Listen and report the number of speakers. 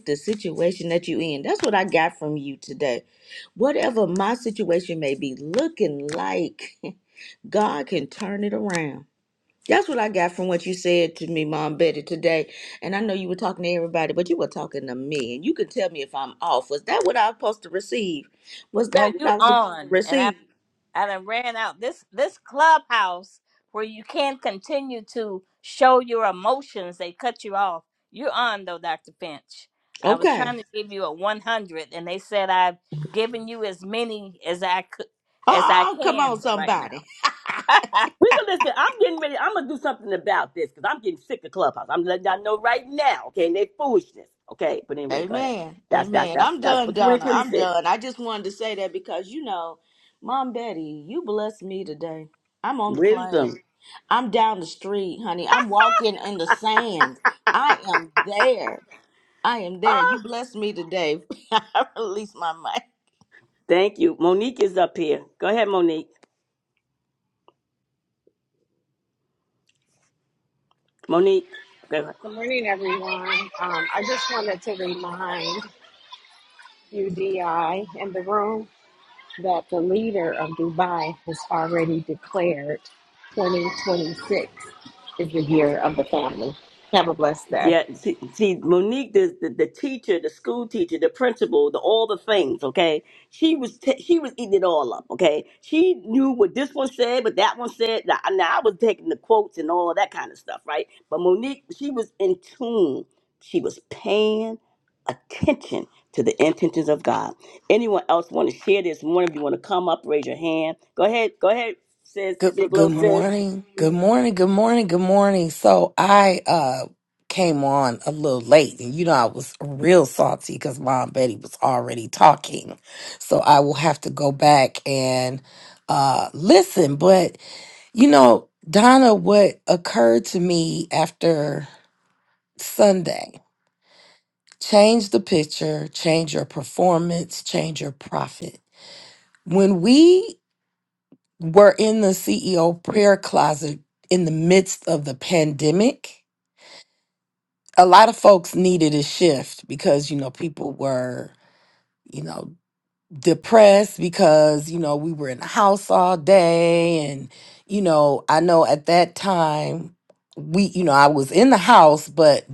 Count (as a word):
five